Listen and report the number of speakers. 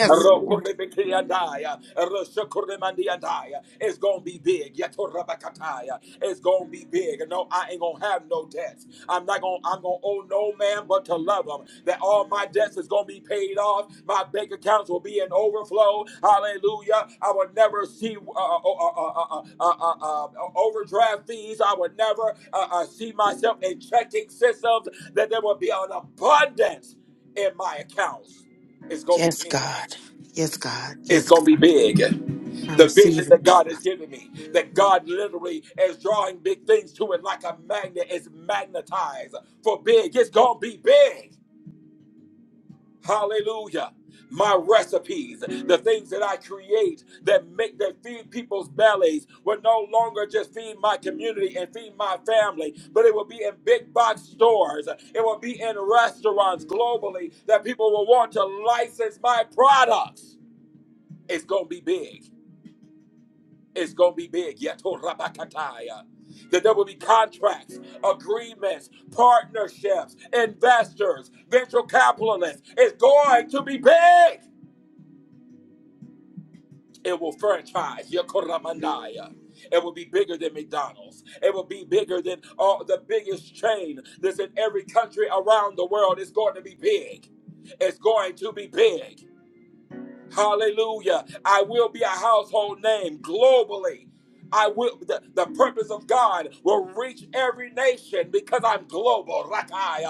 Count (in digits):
2